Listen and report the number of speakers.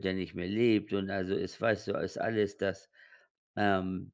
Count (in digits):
1